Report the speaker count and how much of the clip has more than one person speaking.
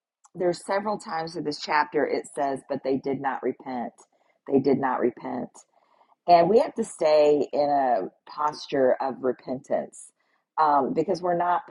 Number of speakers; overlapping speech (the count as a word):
one, no overlap